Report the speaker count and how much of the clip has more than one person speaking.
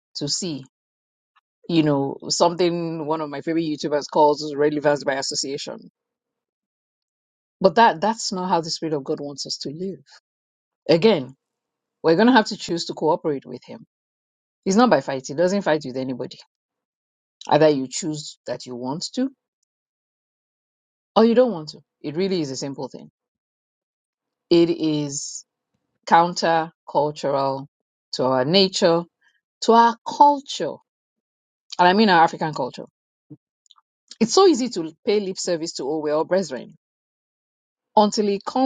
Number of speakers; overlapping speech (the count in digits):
1, no overlap